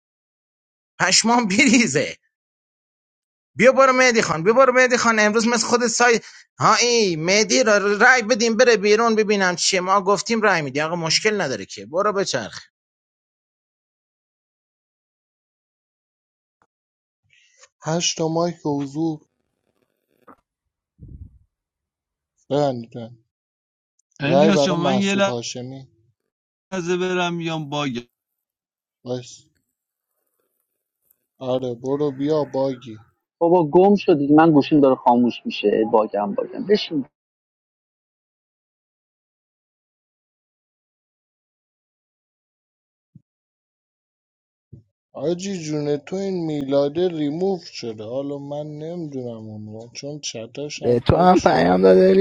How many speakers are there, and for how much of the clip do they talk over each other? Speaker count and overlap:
5, about 4%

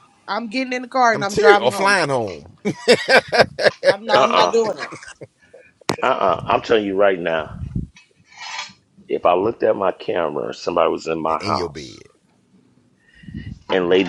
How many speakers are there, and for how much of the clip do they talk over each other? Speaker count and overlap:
3, about 11%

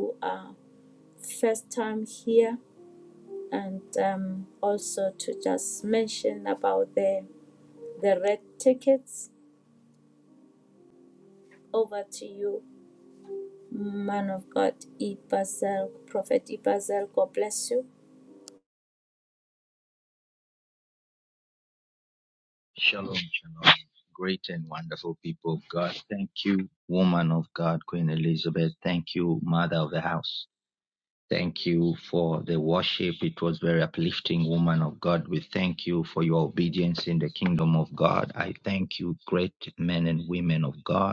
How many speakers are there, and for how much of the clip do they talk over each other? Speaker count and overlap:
2, no overlap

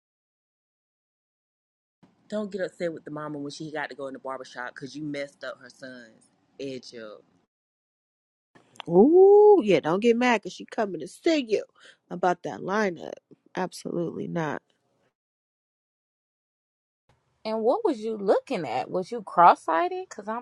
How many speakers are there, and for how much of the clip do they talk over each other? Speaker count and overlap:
3, no overlap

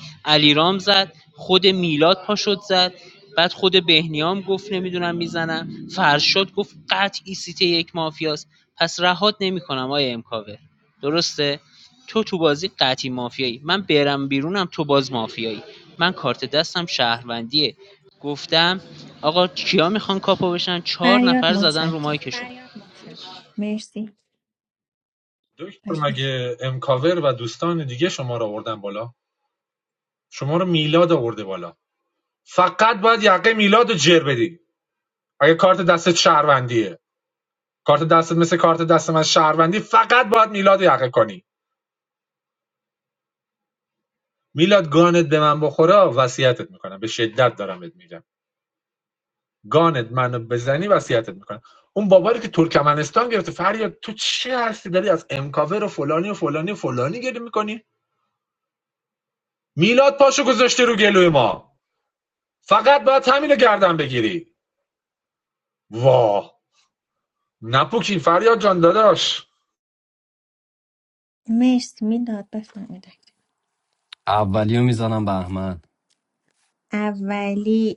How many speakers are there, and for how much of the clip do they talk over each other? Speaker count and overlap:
4, about 2%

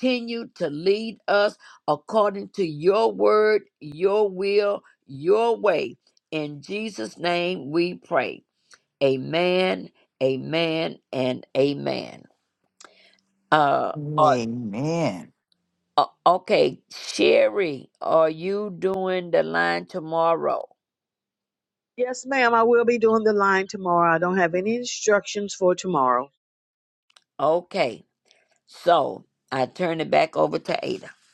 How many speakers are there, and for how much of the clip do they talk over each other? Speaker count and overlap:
3, about 1%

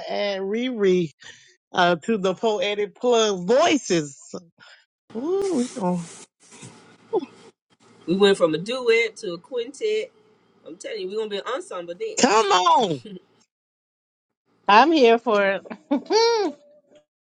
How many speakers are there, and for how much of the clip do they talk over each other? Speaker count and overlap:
3, under 1%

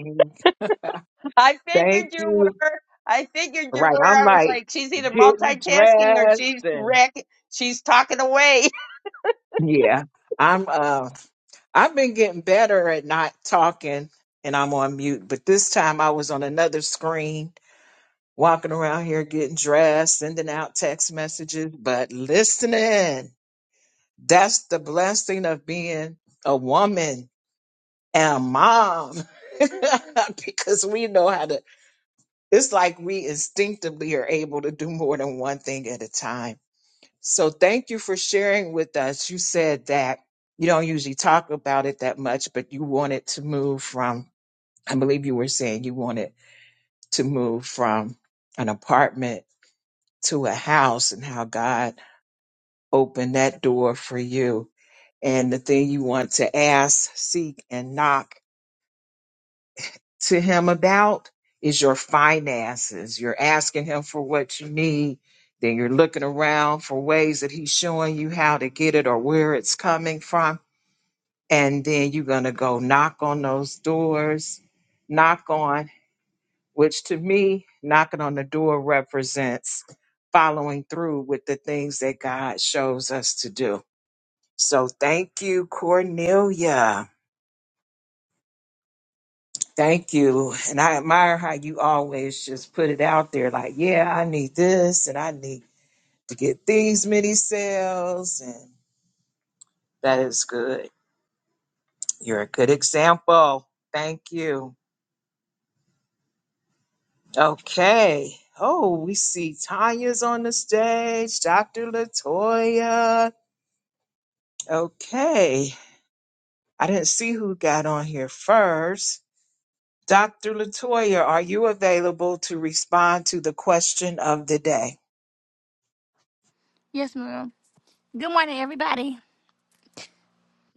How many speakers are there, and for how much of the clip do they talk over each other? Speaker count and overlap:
3, about 3%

